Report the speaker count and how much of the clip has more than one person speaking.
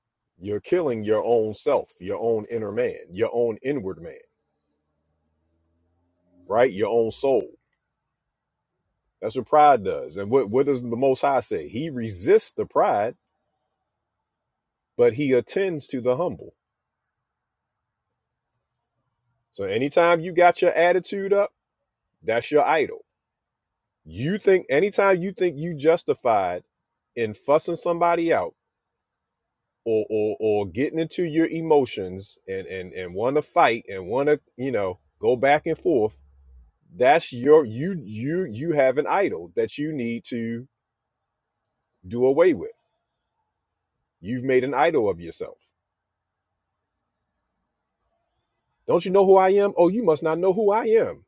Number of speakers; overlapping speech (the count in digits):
1, no overlap